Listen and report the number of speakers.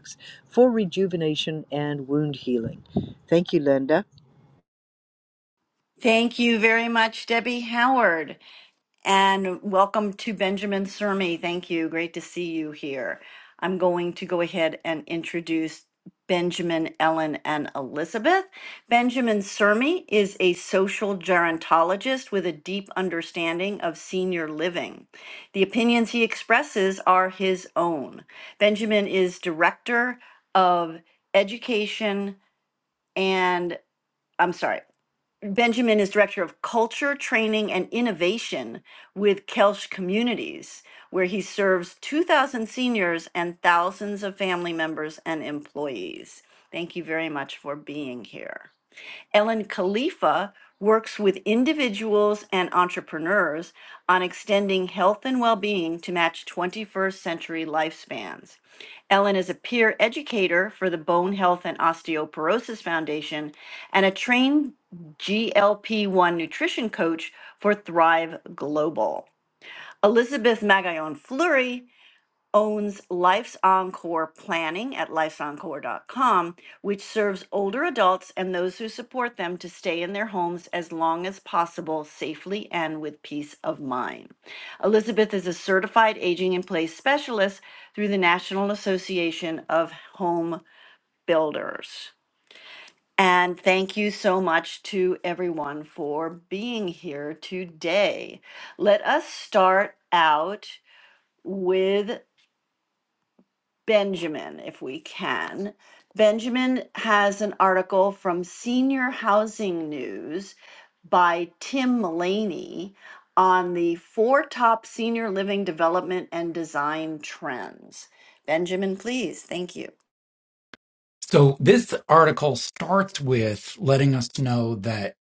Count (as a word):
three